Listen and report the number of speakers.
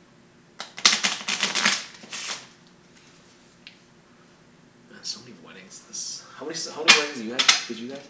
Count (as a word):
one